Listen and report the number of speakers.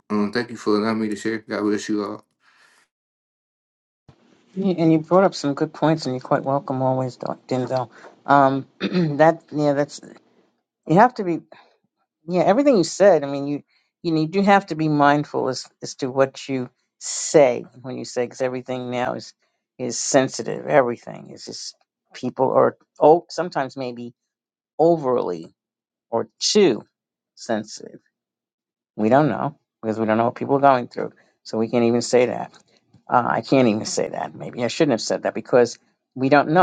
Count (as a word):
two